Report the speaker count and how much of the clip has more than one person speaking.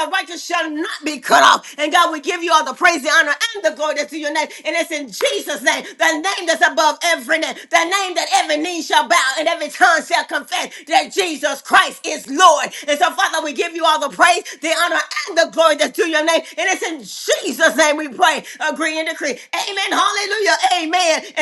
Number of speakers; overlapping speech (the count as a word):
one, no overlap